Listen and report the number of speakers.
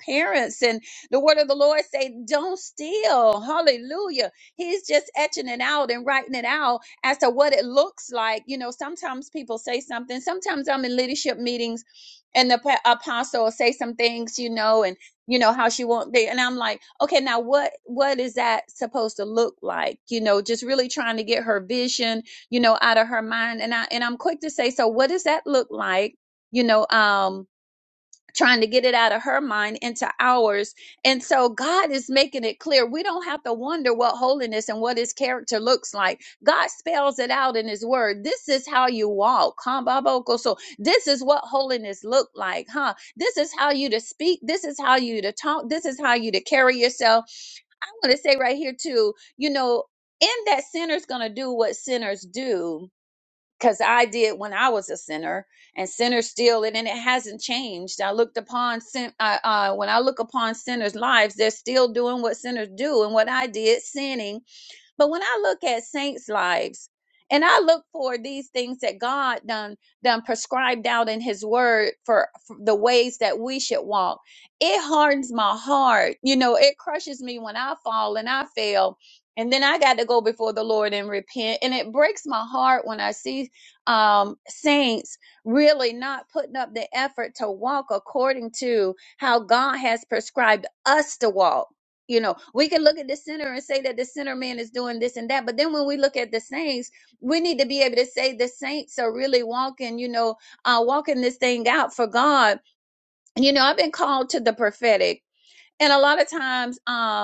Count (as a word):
one